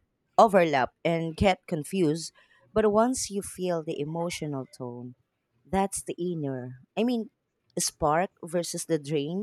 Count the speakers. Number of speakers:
one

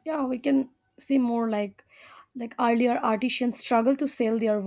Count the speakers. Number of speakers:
one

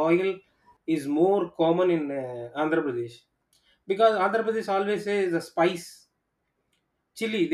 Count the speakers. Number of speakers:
one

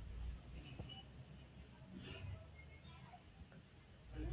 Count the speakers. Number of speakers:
zero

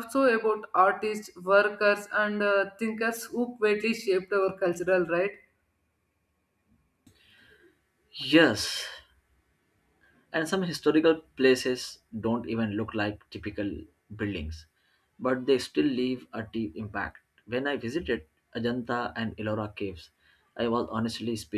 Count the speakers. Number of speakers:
two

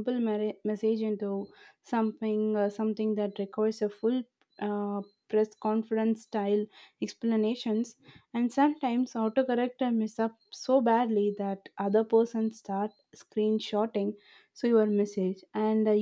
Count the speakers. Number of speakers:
one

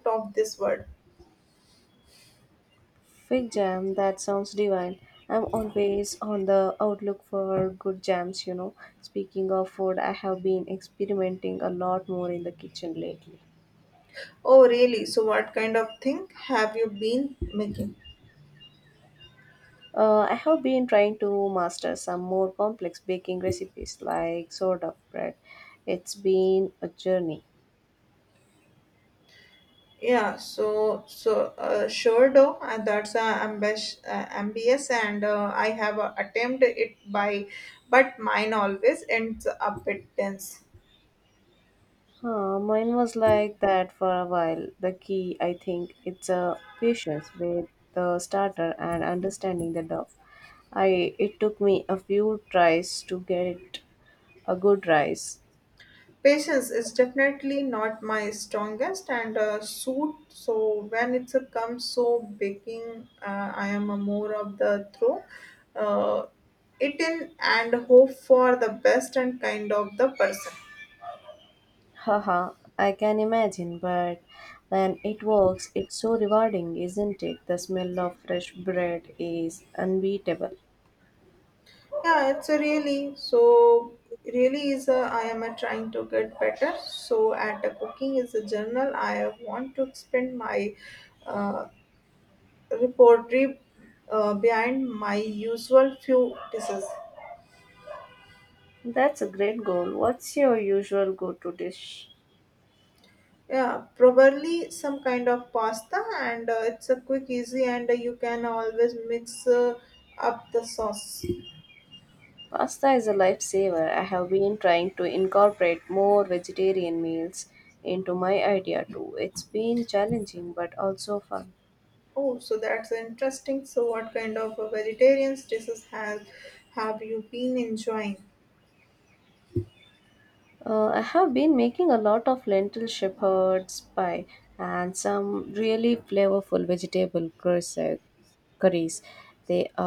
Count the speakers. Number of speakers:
two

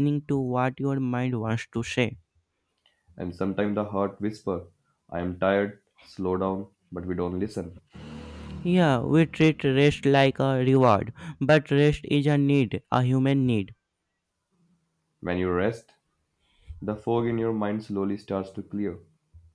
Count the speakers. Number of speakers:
two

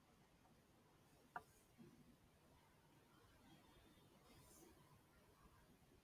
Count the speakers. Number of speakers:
zero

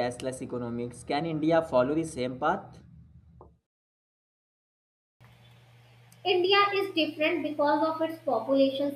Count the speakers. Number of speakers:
two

